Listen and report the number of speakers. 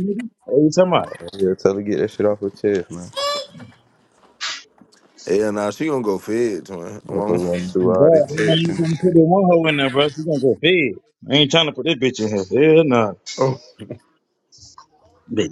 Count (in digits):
3